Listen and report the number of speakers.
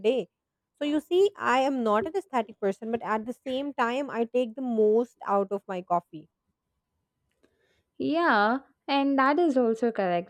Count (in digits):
2